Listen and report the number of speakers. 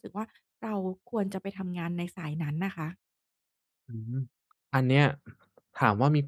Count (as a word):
two